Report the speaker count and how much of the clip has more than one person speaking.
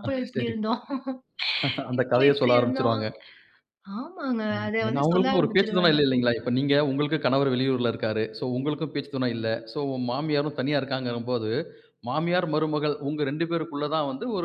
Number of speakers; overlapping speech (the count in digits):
2, about 22%